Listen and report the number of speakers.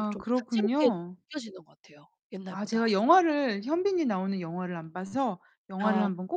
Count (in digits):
2